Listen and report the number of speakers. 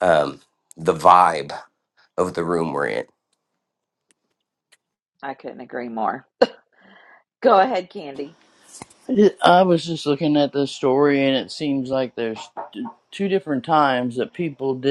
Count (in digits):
3